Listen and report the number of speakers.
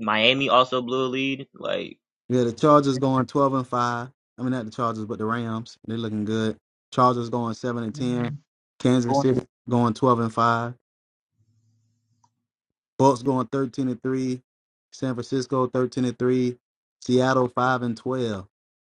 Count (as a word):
two